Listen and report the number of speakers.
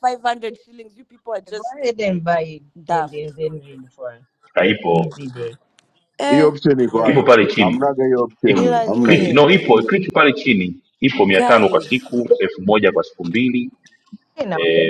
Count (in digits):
4